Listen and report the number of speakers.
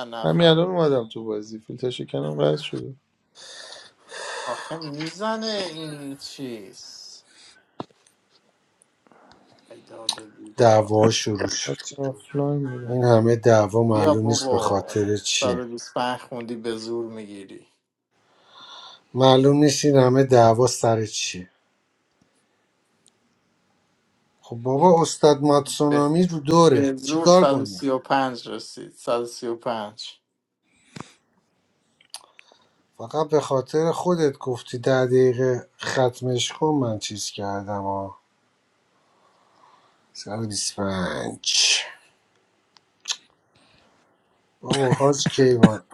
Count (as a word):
three